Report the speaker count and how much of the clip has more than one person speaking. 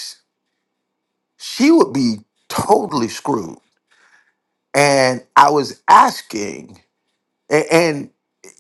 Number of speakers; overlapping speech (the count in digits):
1, no overlap